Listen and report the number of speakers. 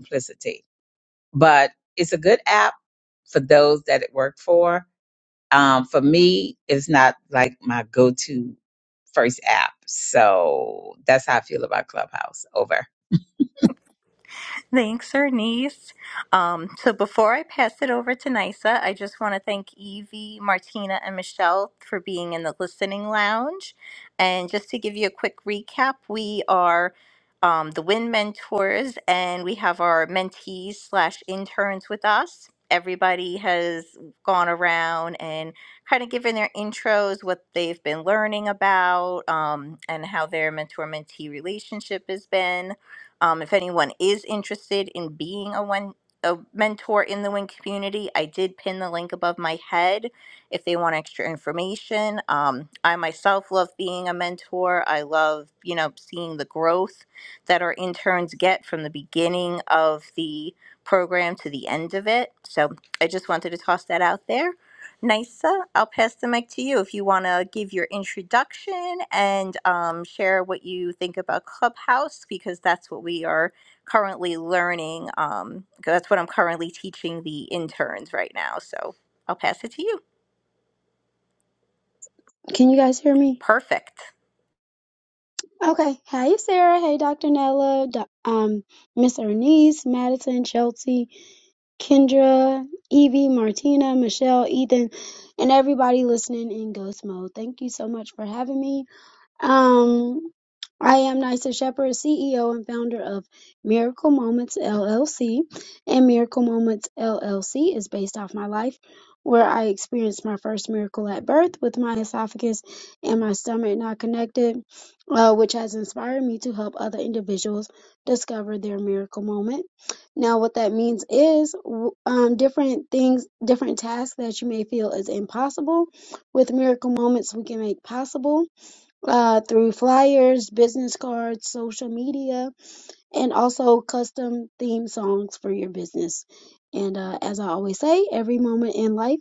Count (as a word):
three